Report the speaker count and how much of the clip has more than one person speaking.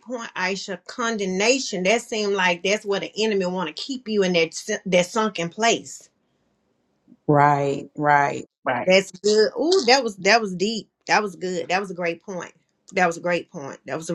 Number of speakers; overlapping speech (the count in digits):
2, no overlap